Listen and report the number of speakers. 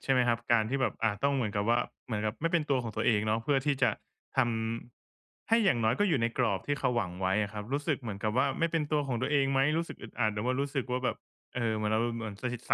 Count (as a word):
one